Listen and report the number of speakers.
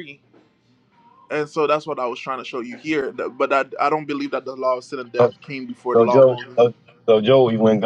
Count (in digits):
2